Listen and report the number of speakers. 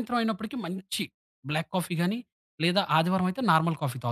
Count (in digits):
1